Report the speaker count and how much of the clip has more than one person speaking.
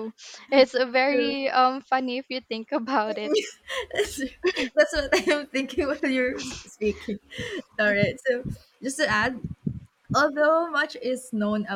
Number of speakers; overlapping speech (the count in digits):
2, about 2%